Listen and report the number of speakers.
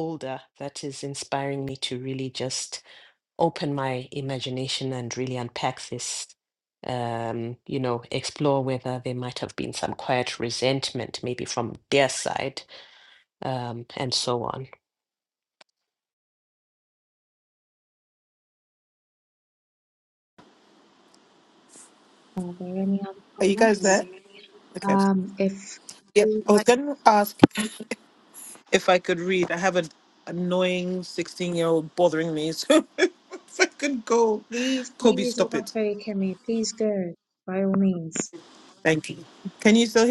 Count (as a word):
three